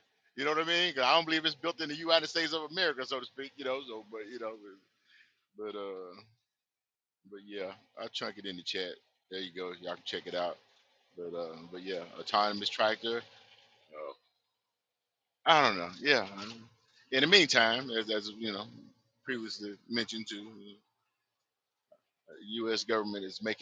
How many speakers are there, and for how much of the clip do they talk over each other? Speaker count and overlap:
one, no overlap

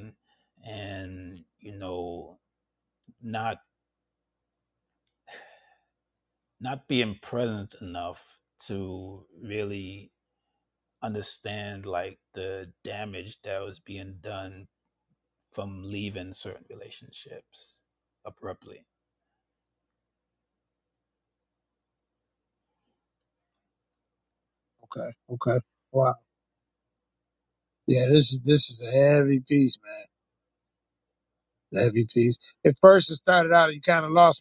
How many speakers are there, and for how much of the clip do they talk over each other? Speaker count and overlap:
two, no overlap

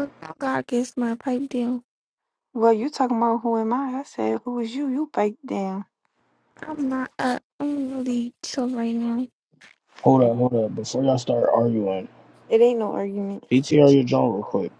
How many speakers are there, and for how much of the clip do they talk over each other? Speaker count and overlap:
three, no overlap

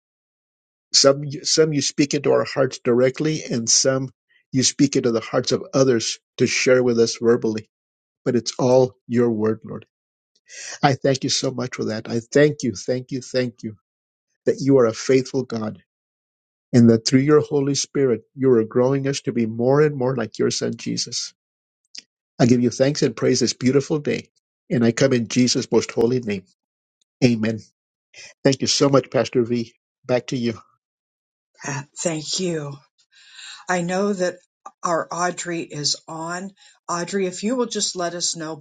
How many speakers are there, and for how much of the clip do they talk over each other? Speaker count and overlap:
two, no overlap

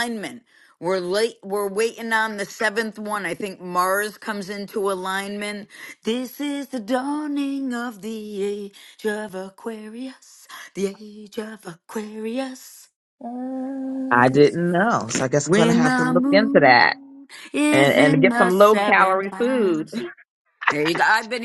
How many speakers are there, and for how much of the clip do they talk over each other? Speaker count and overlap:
three, about 18%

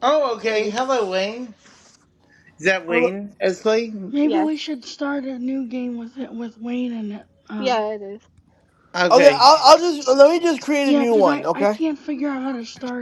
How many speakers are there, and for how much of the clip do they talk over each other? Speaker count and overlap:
four, about 17%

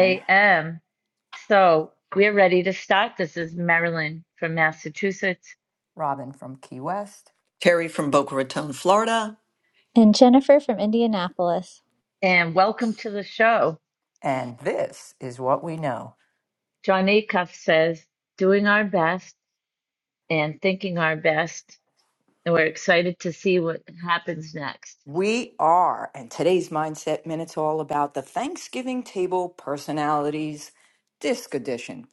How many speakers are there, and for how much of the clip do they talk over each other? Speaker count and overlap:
four, about 1%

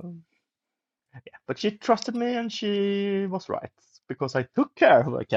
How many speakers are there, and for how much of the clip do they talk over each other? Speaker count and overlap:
one, no overlap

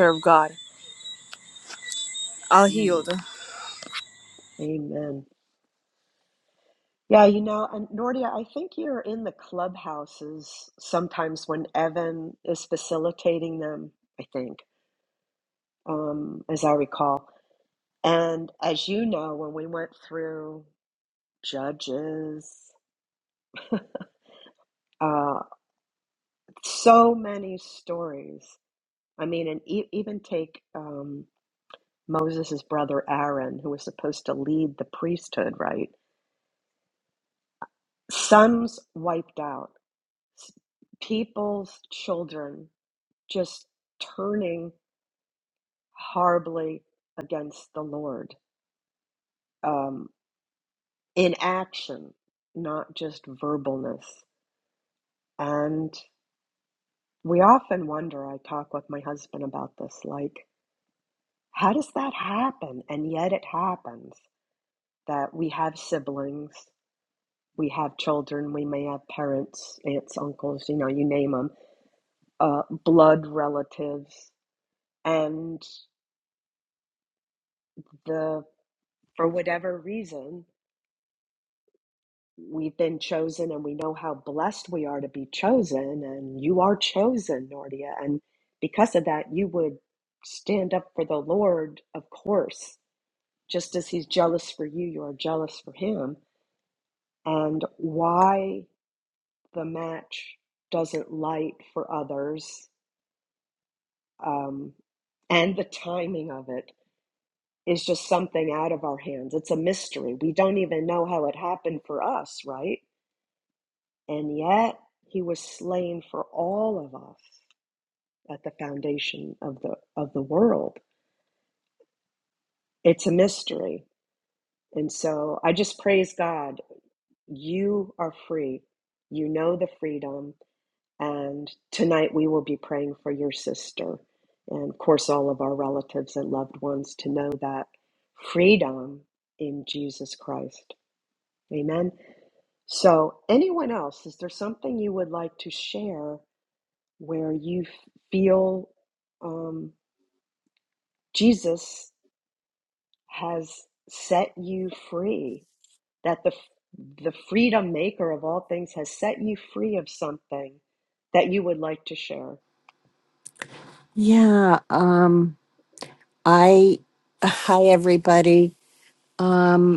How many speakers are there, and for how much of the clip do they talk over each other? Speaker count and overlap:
three, under 1%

